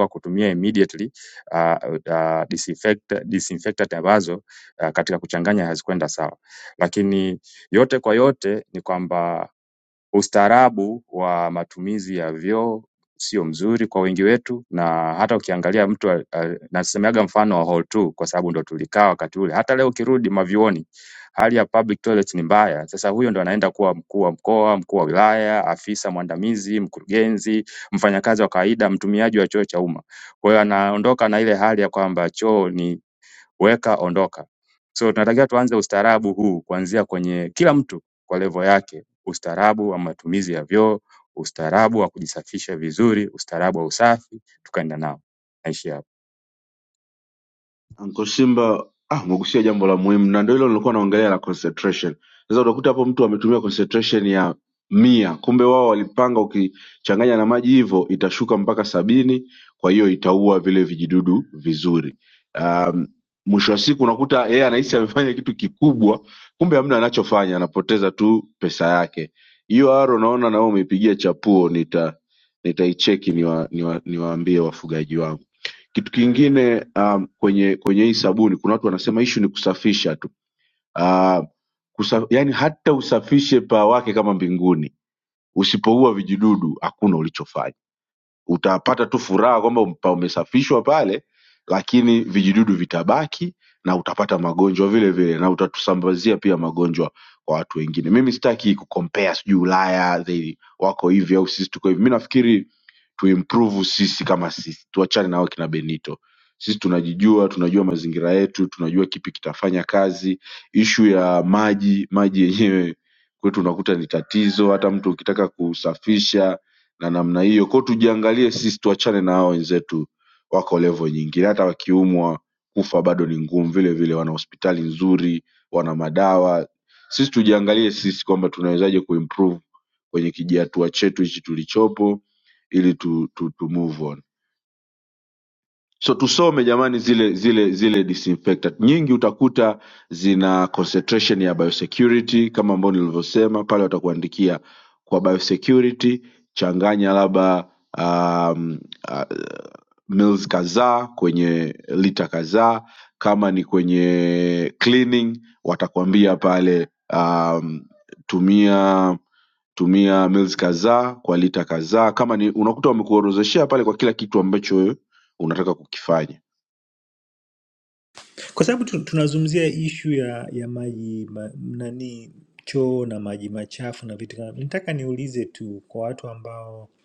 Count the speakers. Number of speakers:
3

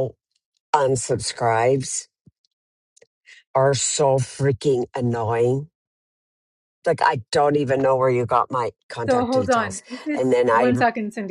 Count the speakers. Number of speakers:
2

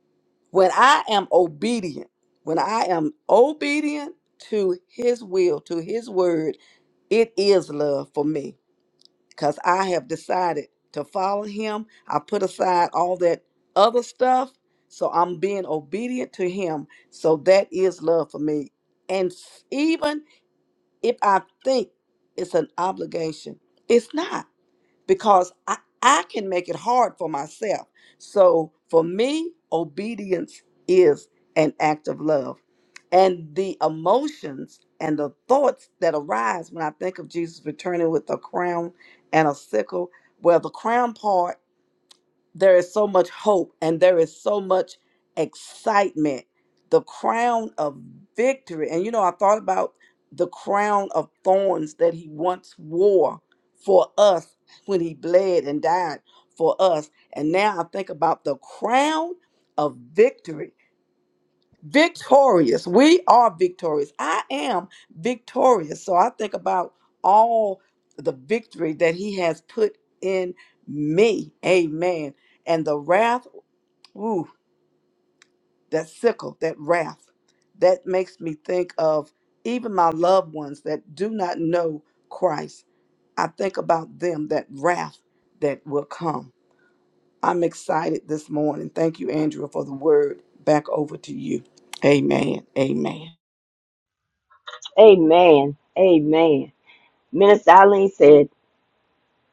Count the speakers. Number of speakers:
2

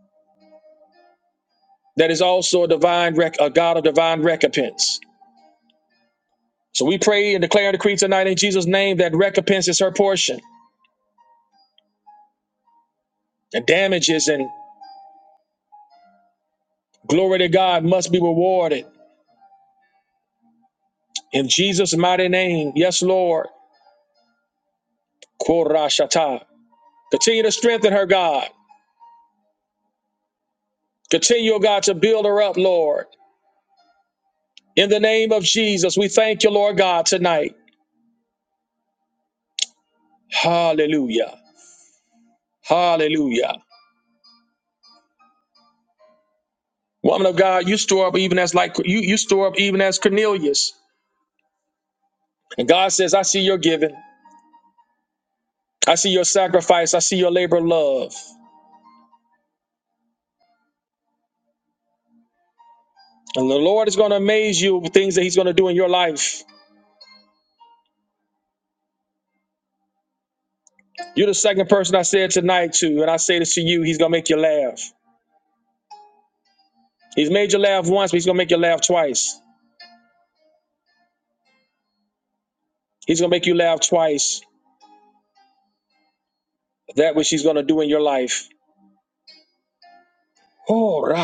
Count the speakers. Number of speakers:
1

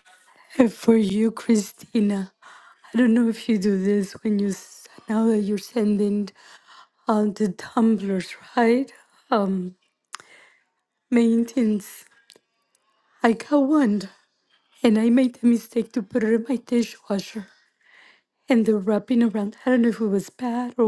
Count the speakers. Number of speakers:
1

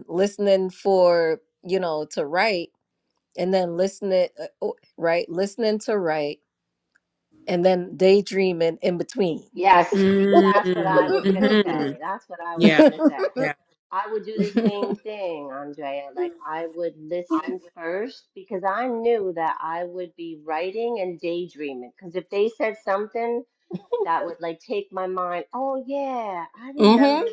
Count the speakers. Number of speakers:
3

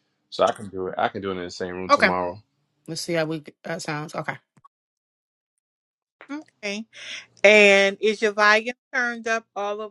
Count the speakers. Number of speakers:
3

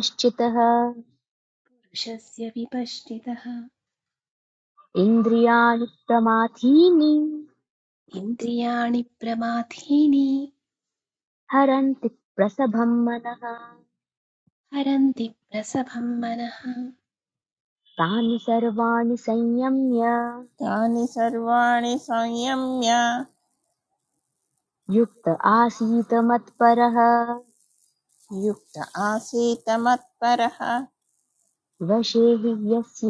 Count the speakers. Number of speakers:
3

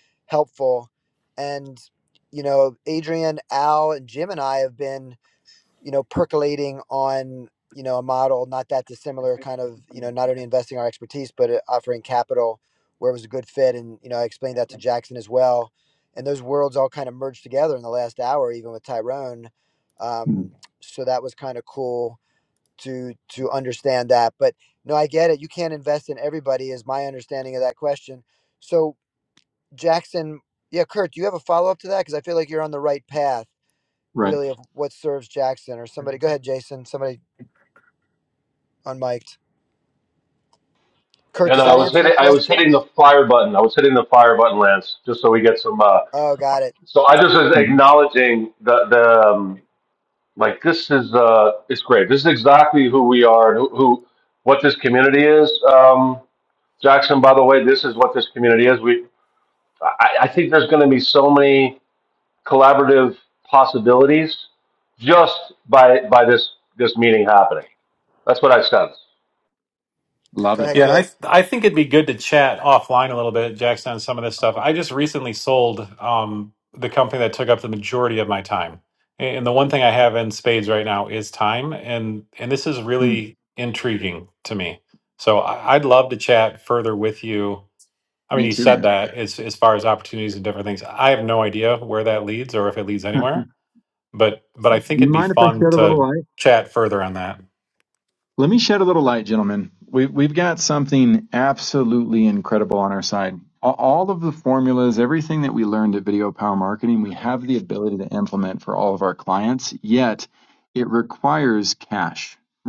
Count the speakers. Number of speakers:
4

